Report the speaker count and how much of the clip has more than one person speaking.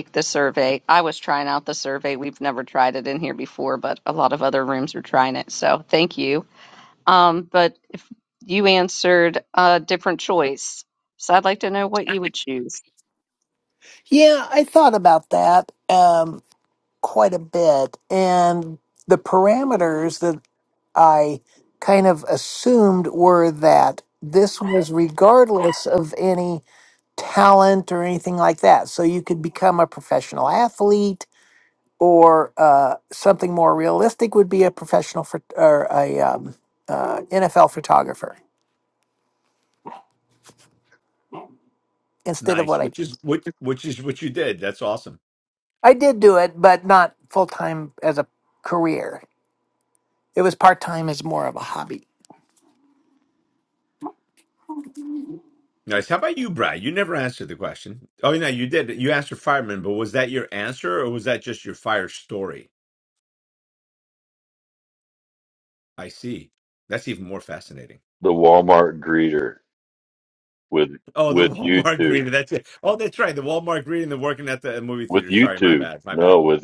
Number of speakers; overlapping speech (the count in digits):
4, about 3%